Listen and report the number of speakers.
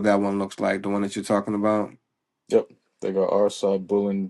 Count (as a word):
two